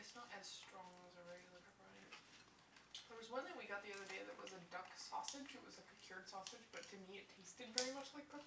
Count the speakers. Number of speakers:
one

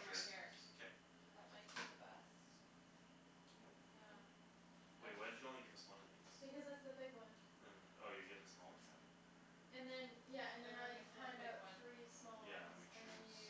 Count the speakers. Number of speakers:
three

